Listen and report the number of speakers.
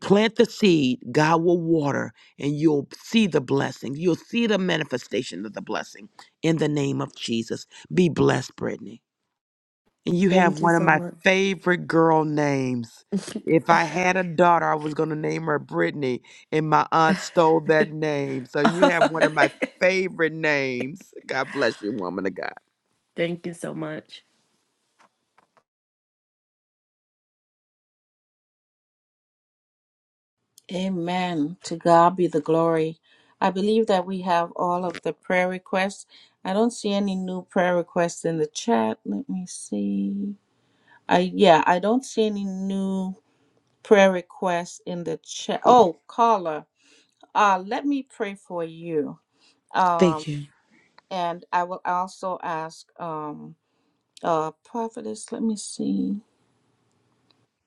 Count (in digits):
3